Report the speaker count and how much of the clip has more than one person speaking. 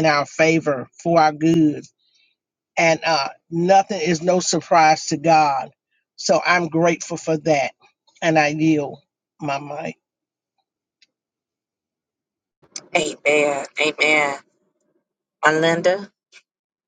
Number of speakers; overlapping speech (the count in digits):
2, no overlap